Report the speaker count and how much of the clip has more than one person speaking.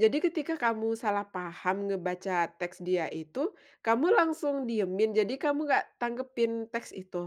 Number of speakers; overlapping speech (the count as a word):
one, no overlap